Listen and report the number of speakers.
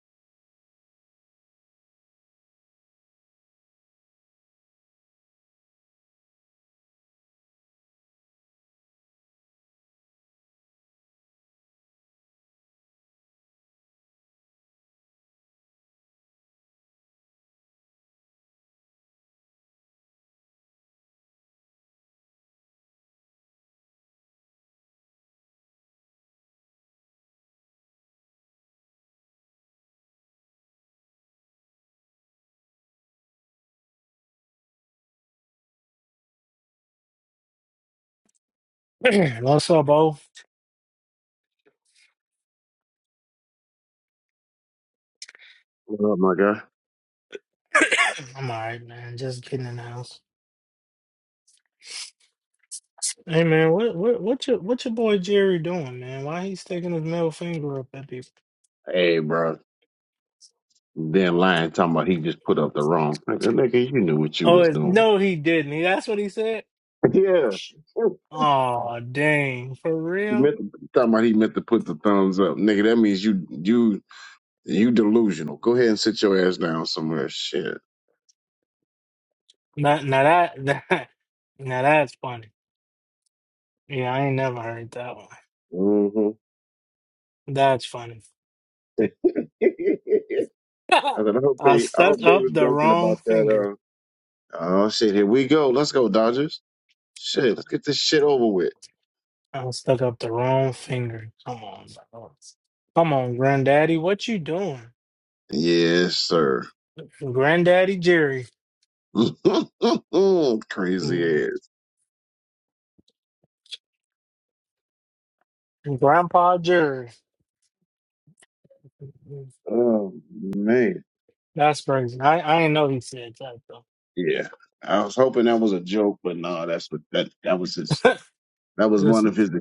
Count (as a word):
two